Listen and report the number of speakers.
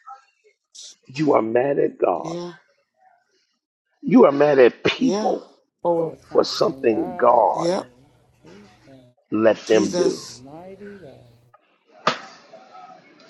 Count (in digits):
3